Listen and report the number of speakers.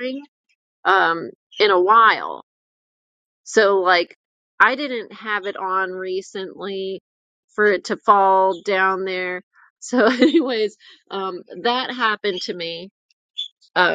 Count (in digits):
1